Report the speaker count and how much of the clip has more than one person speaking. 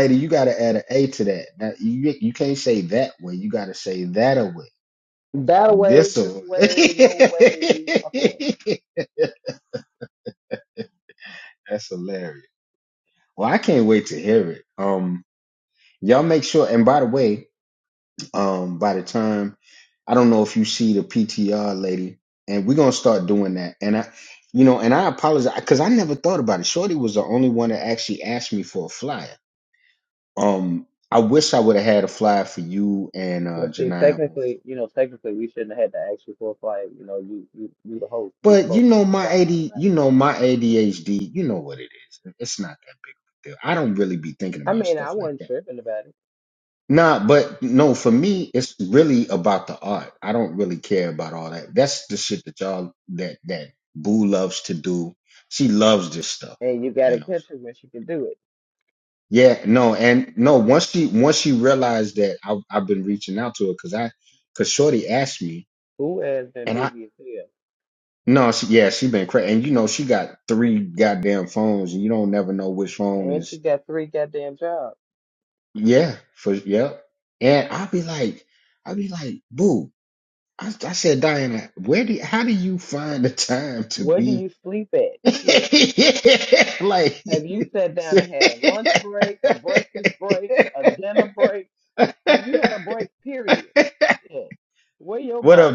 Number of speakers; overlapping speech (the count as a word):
two, about 5%